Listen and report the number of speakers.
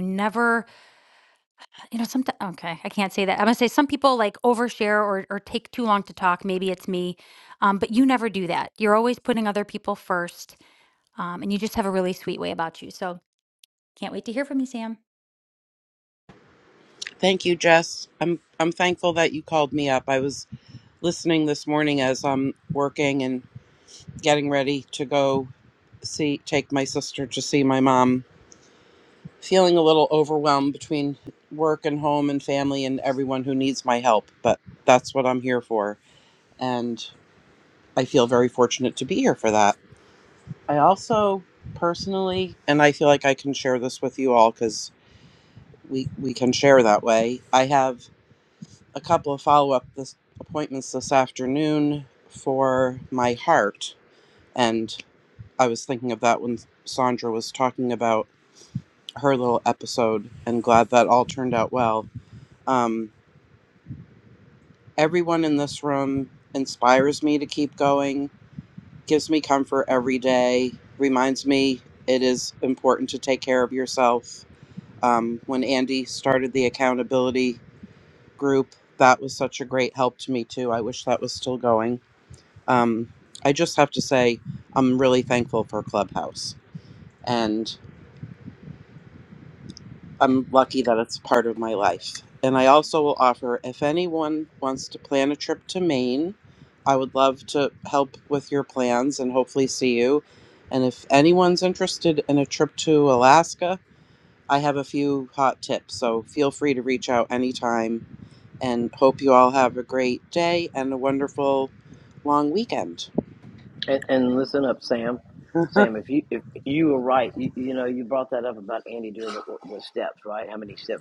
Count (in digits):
3